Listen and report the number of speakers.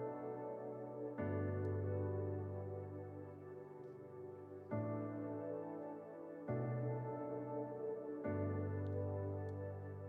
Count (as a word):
zero